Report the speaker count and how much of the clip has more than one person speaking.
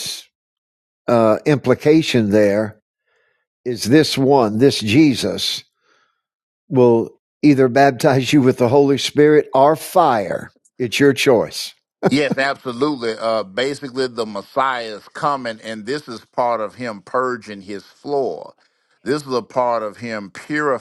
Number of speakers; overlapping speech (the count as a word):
two, no overlap